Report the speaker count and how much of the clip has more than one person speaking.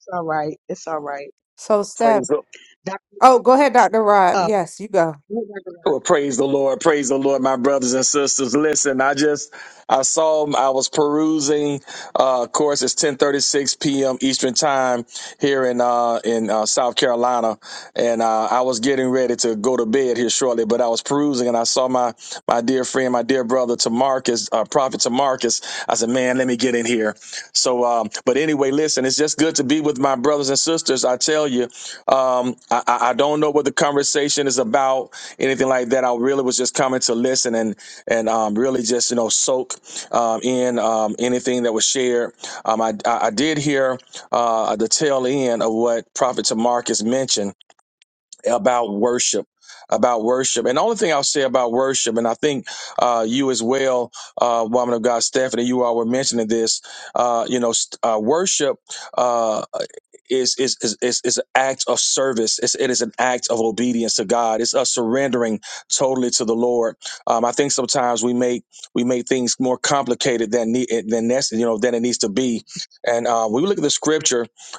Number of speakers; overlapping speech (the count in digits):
3, about 1%